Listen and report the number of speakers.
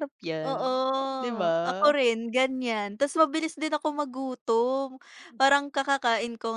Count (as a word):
two